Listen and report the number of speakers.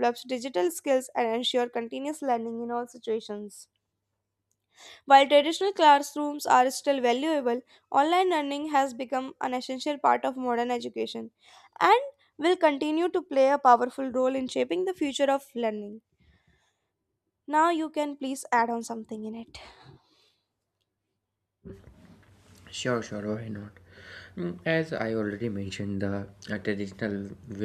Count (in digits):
2